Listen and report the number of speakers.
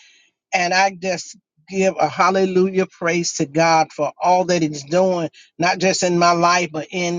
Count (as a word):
one